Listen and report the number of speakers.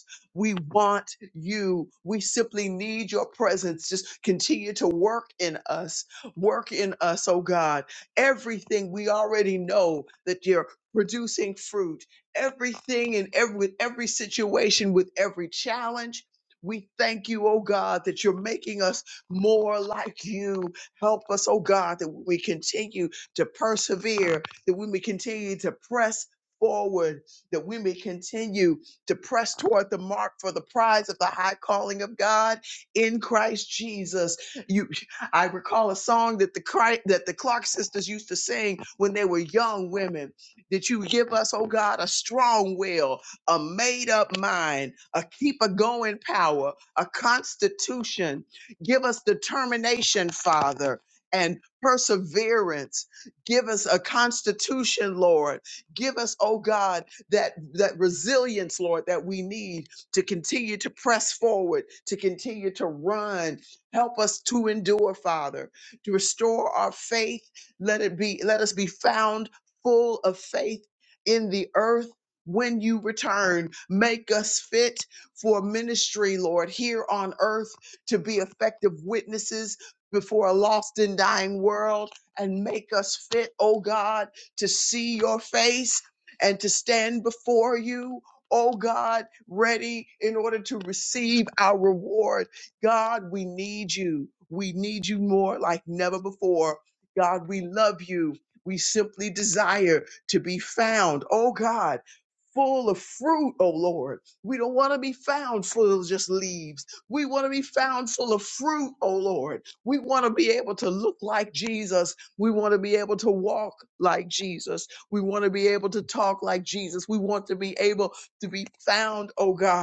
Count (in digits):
1